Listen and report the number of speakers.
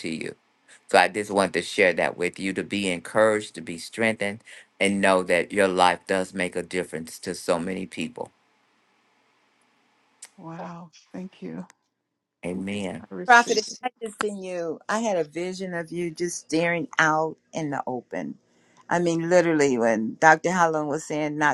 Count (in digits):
3